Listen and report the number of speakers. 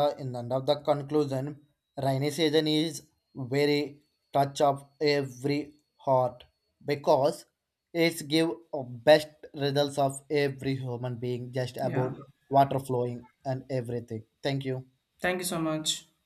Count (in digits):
2